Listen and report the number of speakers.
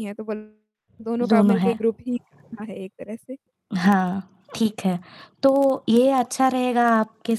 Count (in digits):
2